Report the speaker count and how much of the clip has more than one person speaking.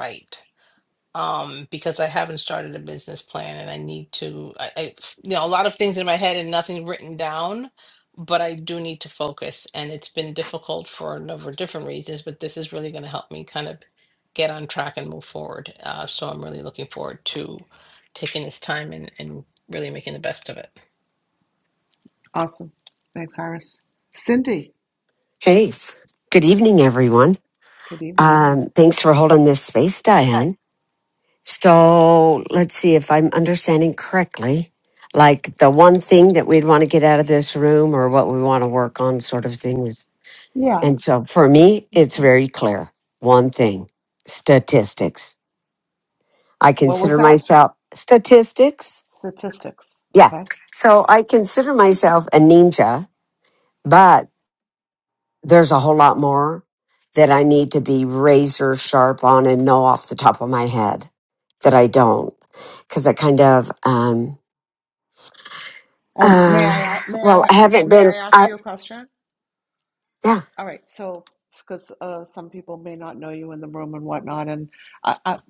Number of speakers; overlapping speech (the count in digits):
3, about 4%